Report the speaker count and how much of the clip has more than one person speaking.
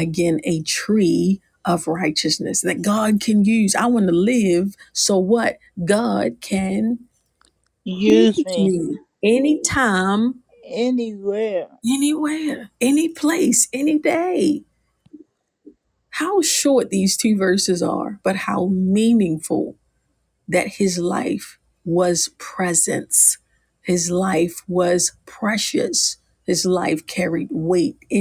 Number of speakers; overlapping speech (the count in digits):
2, about 2%